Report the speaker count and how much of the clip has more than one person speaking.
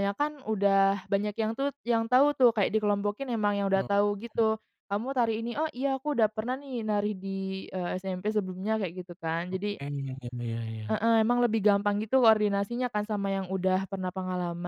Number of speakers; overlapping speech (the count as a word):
two, about 4%